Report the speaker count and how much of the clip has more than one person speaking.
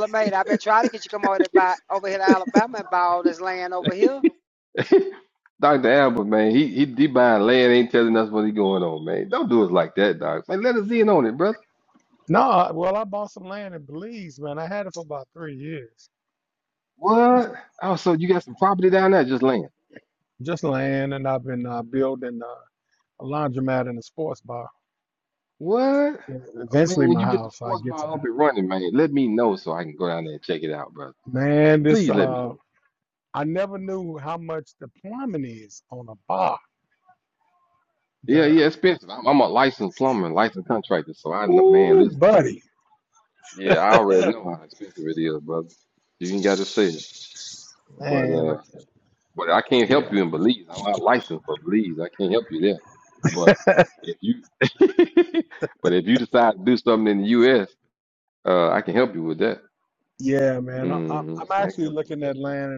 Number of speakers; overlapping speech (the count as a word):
three, about 9%